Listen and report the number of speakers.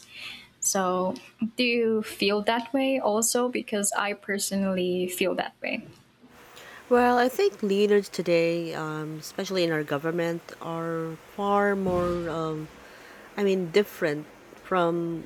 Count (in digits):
2